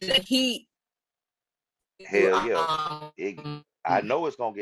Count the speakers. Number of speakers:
2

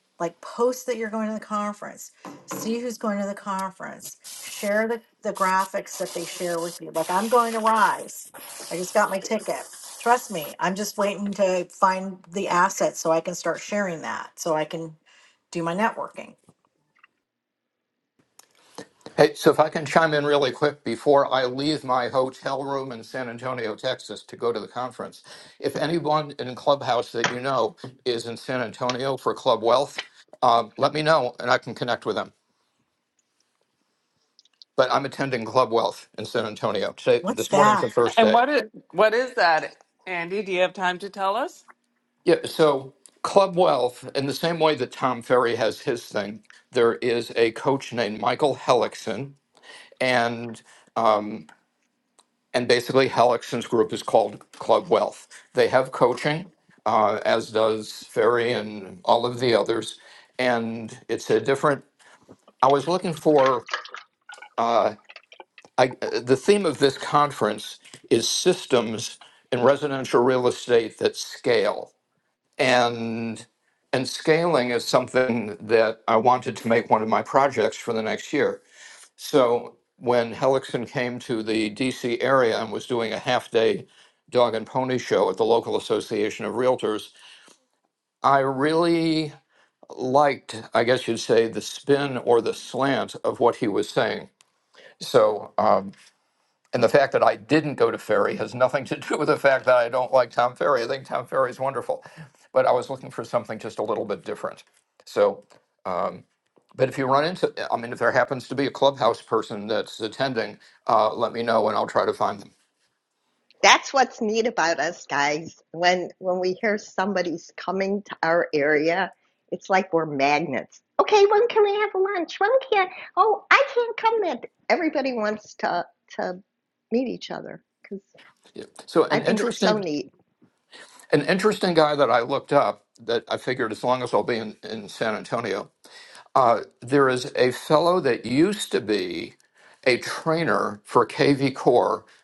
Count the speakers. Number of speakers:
4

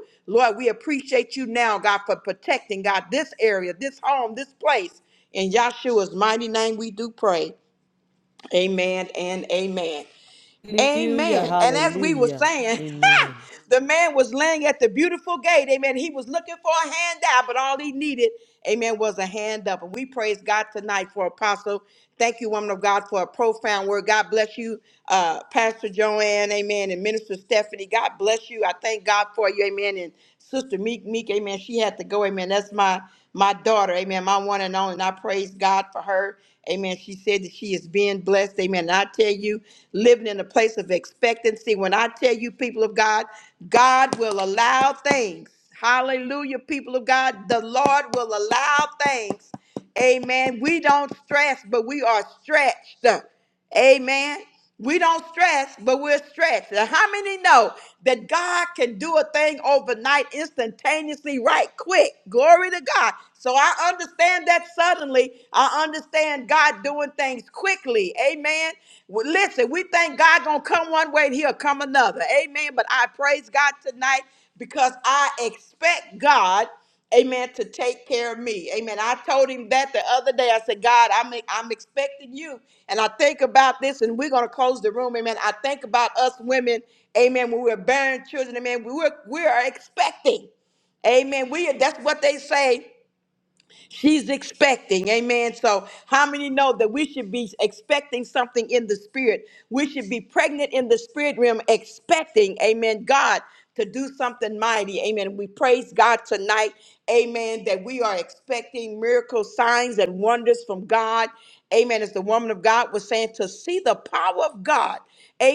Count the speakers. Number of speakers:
2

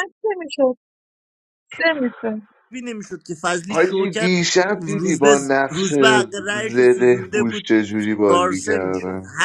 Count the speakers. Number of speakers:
3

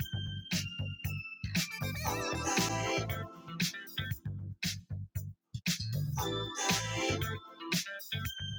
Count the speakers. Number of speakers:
0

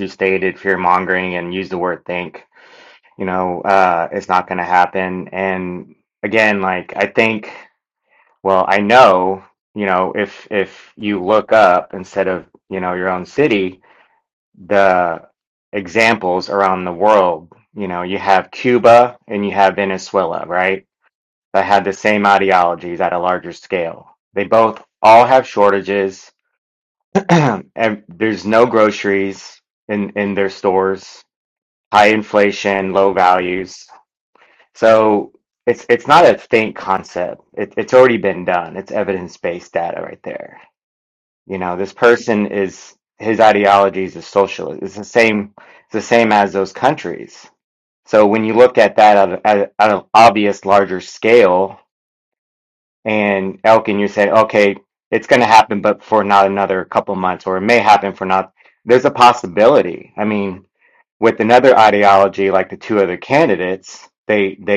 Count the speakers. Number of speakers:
1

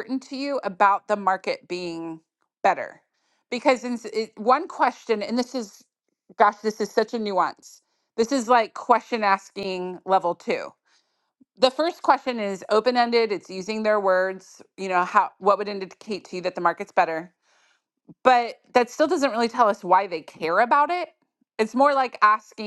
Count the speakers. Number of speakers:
1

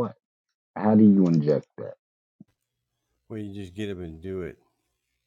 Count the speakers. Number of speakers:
2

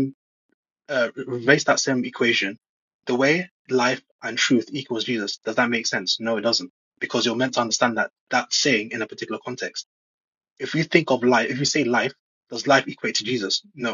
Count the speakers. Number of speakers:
1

